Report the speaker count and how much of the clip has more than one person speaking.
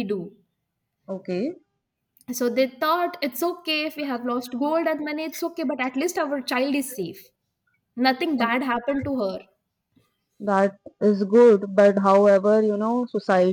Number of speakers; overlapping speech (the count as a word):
two, no overlap